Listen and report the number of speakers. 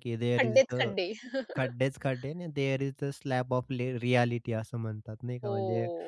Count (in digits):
2